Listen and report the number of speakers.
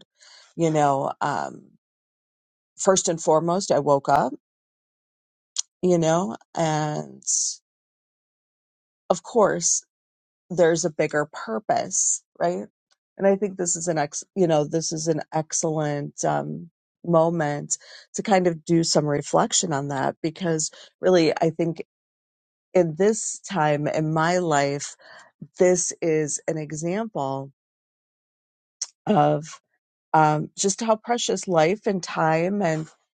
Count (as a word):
one